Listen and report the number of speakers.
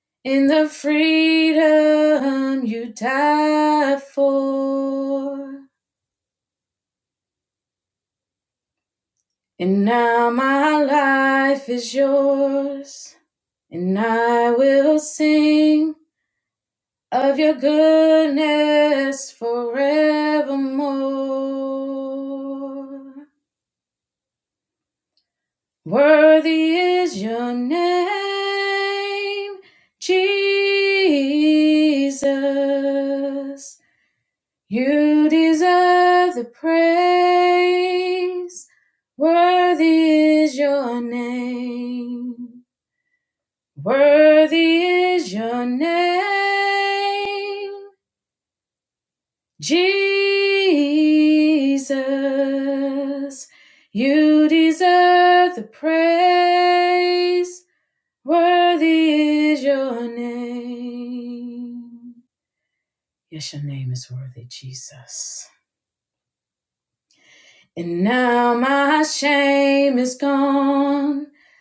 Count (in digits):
1